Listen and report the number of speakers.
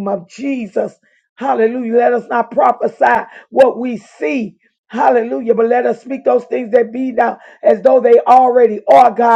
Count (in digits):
1